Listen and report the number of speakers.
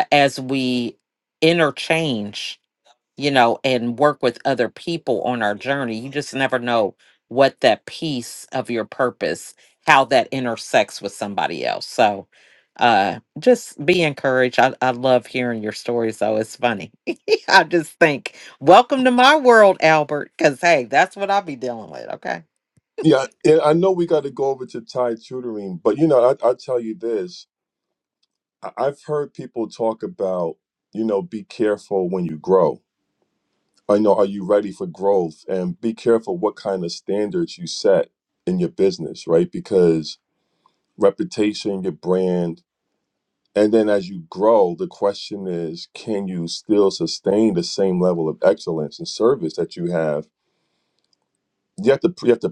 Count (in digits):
2